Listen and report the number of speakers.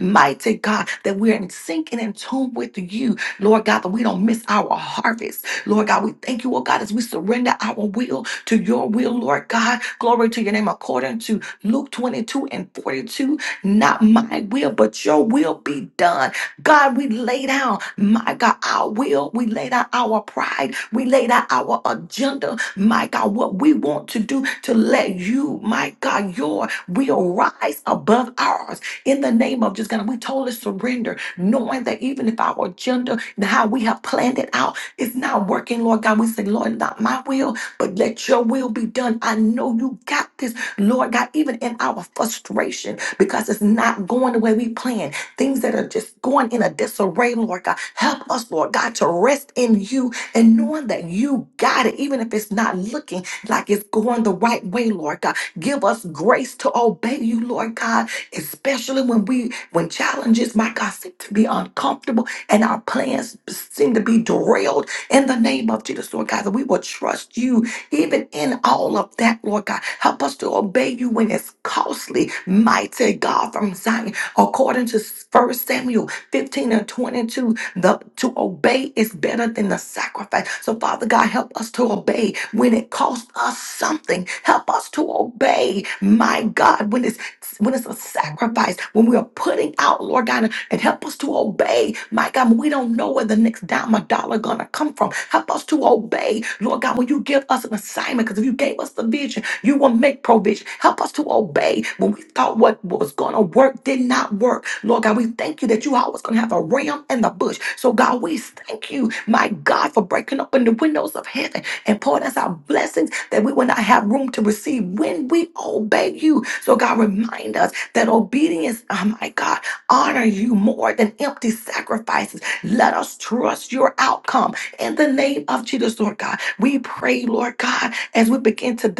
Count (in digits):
1